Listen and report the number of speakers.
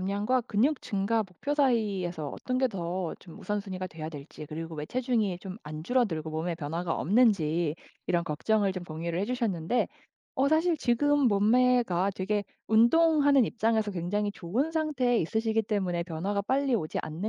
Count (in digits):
1